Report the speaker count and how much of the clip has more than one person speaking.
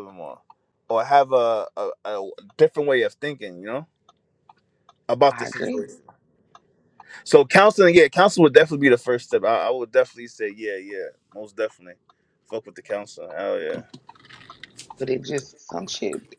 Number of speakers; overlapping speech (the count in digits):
2, about 3%